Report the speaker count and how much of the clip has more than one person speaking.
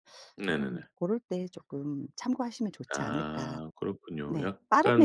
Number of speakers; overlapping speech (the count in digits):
2, about 34%